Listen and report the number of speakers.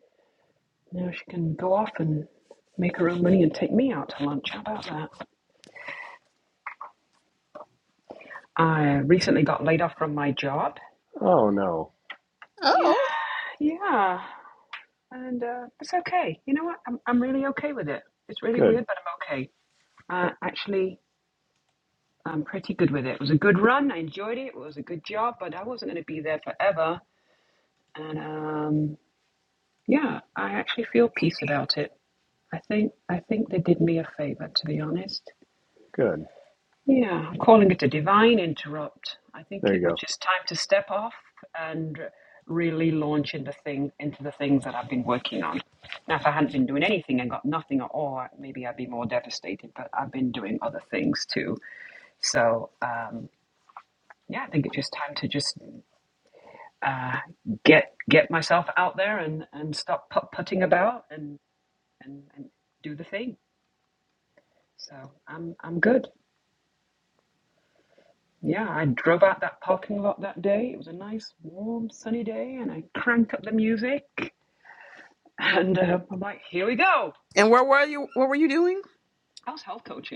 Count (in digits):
3